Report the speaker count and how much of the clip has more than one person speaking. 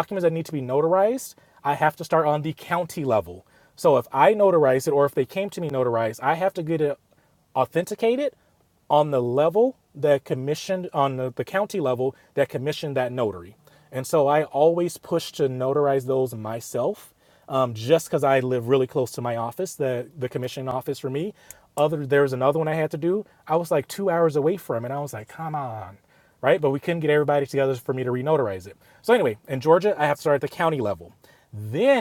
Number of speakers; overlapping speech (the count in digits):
1, no overlap